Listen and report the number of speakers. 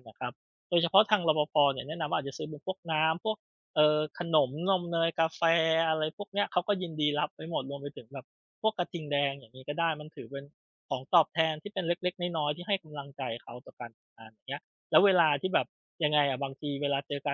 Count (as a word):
one